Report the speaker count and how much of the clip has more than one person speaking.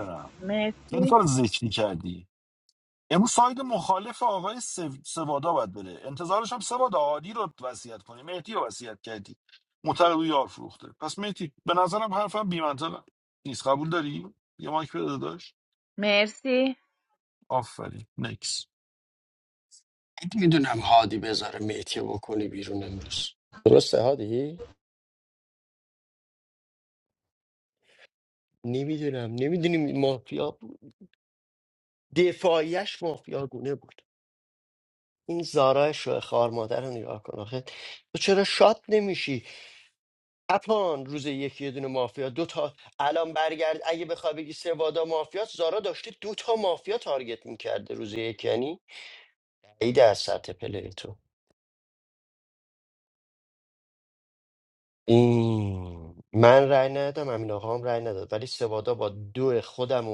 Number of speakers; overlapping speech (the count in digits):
3, under 1%